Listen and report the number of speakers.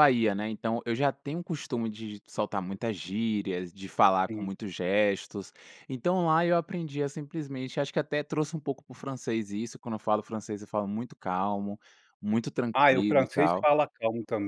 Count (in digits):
2